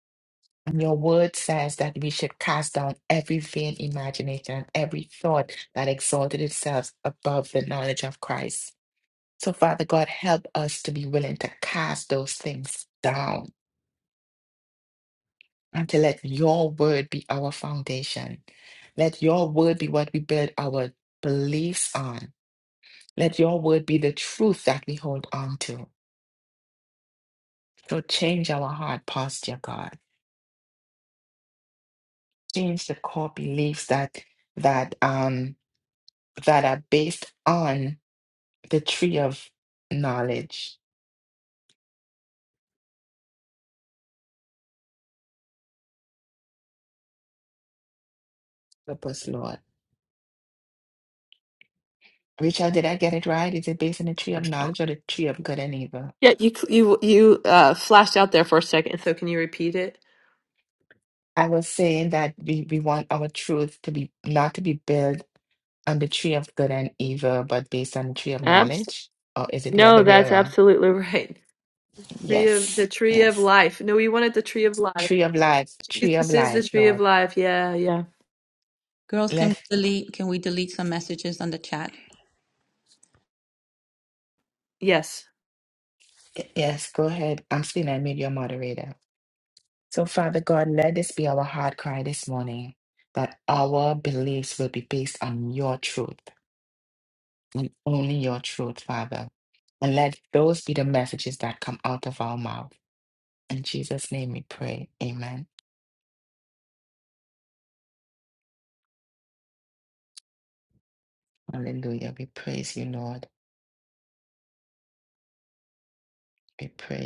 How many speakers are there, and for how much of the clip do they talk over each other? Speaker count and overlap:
3, about 3%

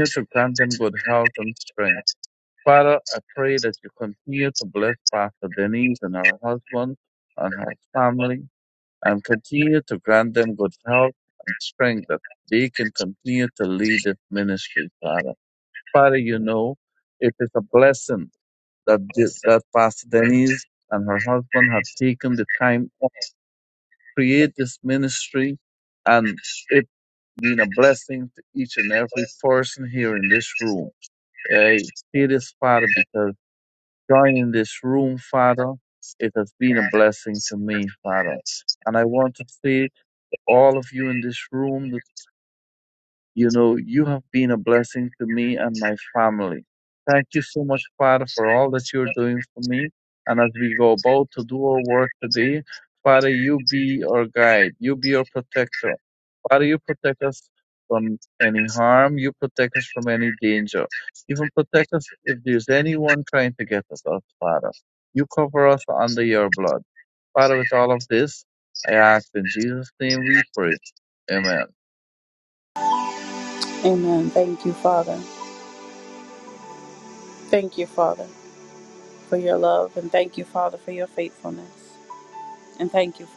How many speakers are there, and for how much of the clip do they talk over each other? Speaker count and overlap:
2, no overlap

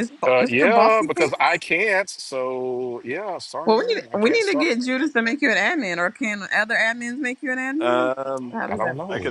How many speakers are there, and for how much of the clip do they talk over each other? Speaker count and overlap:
3, about 32%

